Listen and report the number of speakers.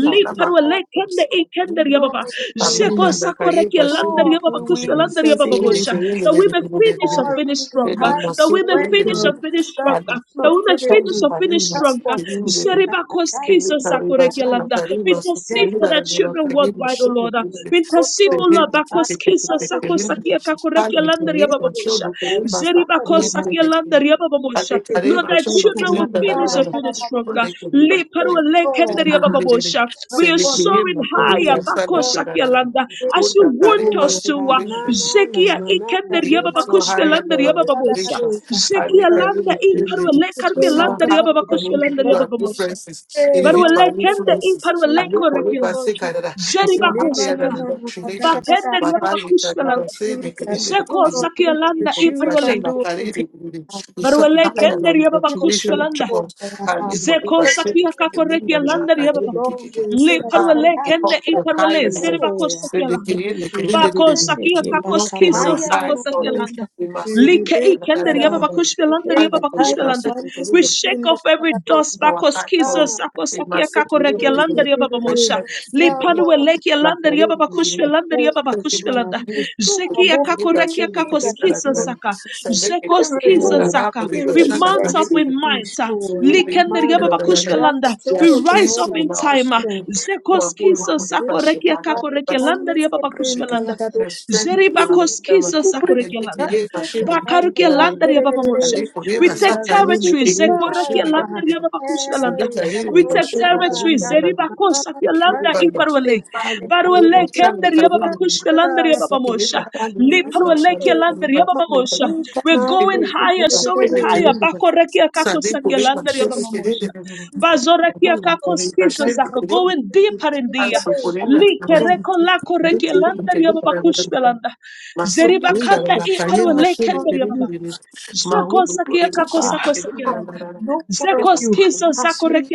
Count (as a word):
three